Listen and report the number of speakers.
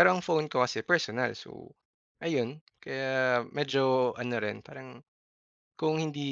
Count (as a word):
one